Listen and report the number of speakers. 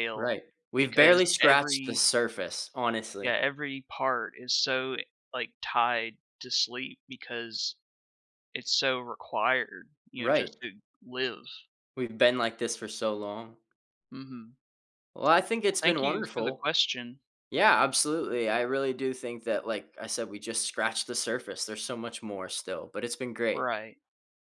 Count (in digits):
2